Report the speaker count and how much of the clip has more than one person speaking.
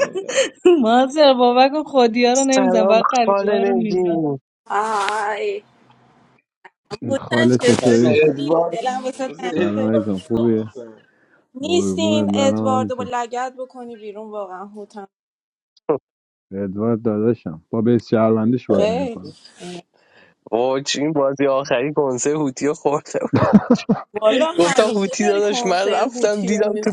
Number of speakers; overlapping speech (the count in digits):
5, about 32%